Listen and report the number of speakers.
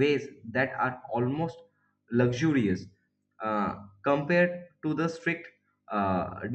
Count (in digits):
1